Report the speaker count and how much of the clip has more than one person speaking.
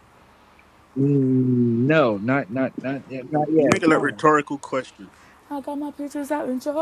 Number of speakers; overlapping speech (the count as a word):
three, about 12%